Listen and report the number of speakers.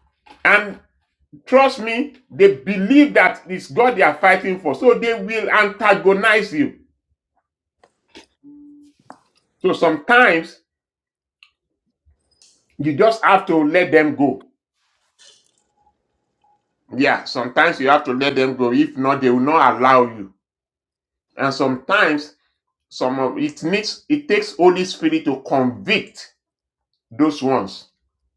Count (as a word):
one